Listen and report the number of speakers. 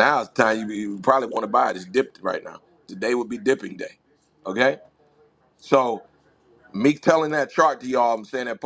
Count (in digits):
1